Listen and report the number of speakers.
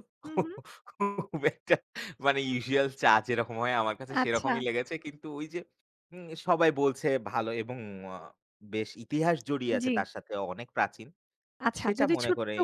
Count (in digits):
2